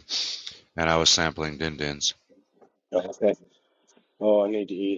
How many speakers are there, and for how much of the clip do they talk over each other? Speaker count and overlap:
two, no overlap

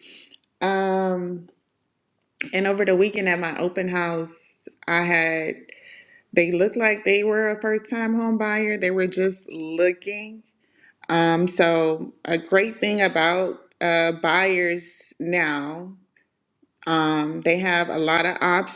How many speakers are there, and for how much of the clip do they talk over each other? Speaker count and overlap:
one, no overlap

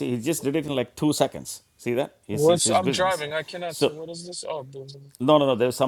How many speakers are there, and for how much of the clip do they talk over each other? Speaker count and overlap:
two, about 16%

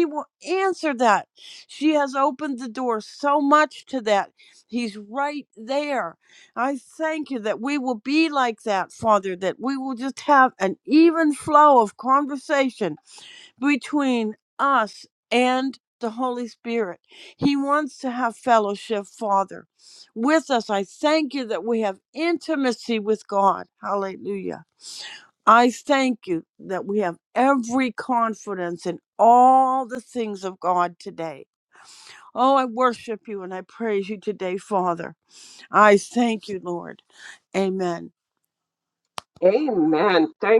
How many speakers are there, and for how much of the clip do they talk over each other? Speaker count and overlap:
two, no overlap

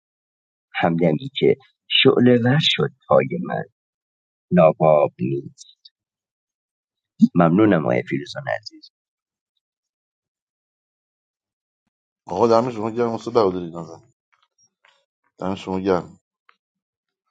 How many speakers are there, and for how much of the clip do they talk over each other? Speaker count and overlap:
two, no overlap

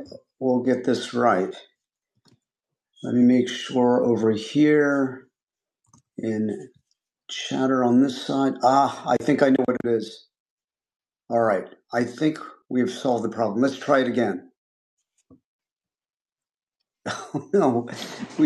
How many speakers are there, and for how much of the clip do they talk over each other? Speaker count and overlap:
one, no overlap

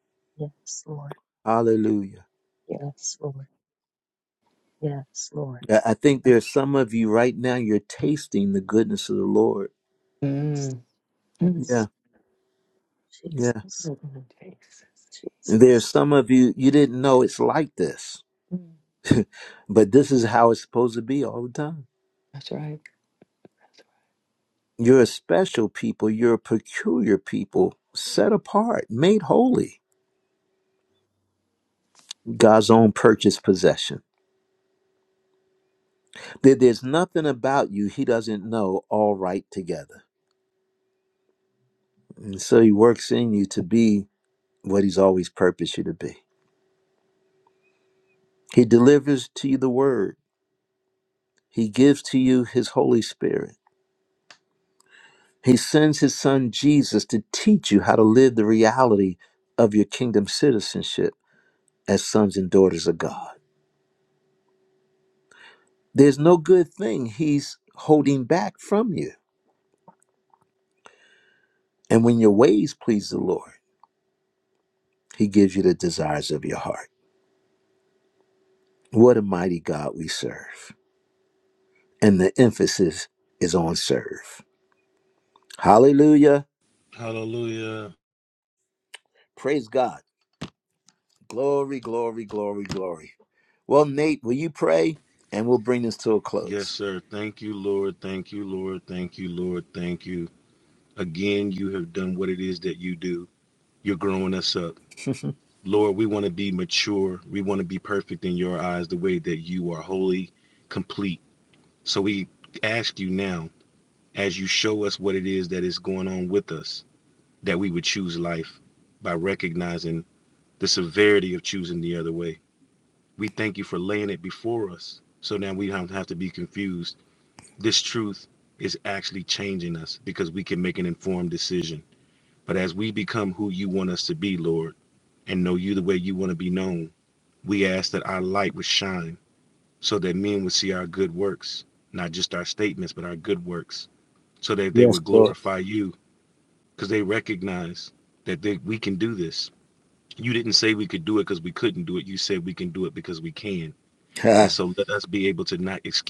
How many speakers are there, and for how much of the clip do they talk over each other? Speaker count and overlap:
four, about 1%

